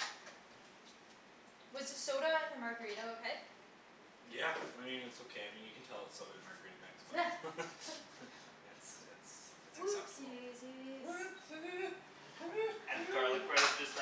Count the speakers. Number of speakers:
4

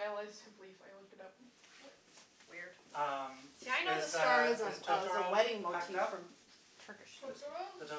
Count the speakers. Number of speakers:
3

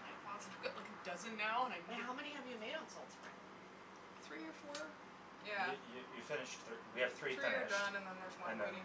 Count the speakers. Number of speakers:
3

